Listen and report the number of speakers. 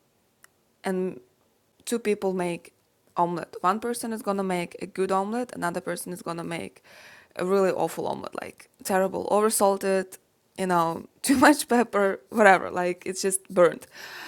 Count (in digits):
1